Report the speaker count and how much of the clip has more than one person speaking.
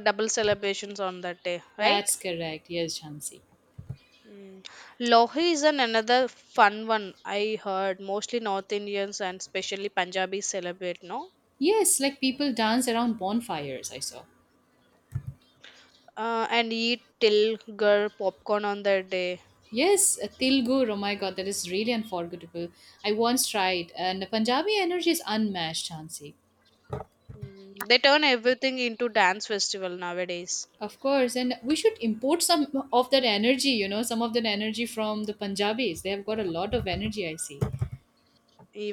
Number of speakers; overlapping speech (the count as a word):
two, under 1%